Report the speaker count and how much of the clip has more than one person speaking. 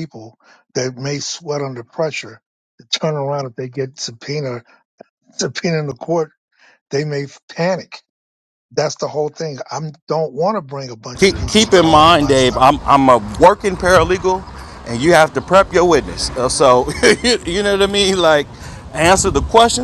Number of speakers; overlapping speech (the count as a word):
two, about 7%